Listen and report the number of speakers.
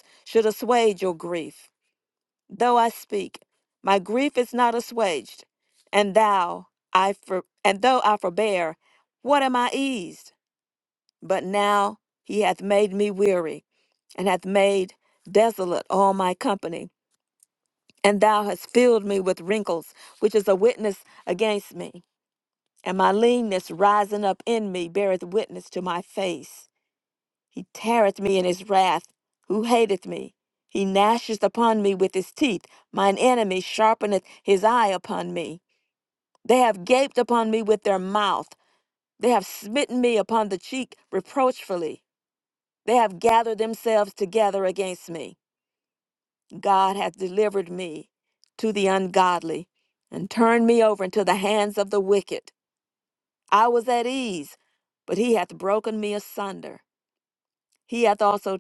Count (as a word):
one